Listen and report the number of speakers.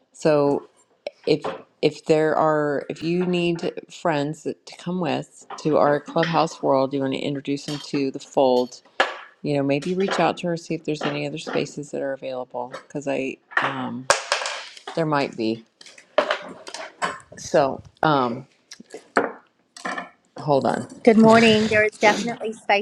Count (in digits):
2